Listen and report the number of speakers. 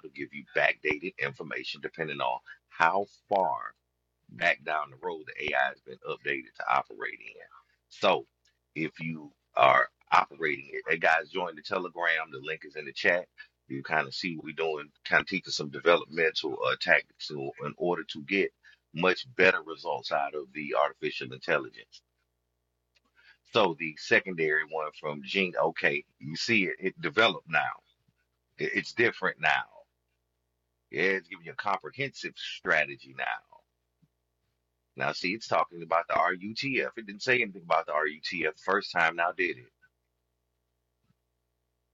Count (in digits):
1